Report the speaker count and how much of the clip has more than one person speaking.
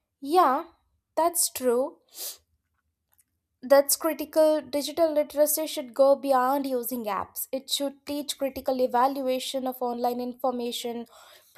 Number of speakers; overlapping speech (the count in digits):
1, no overlap